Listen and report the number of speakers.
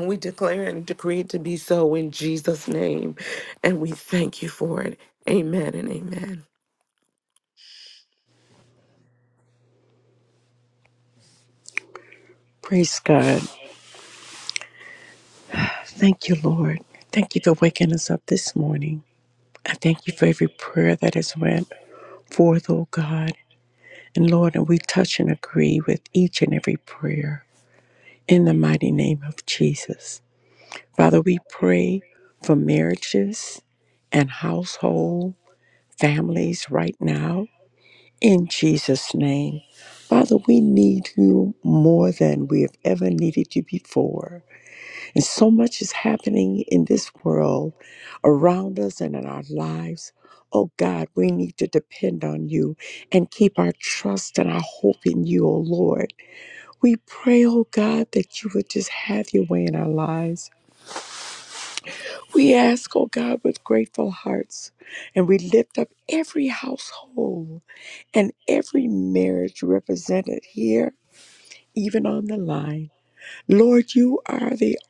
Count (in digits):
2